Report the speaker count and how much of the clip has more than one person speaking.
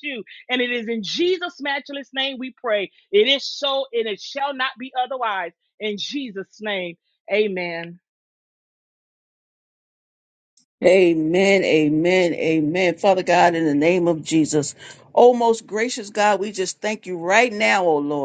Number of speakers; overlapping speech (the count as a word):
two, no overlap